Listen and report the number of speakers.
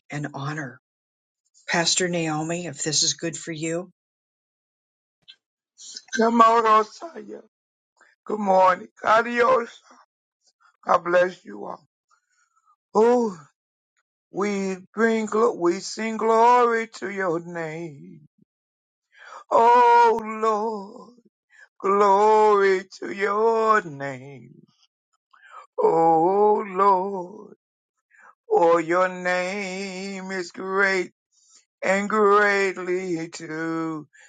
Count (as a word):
two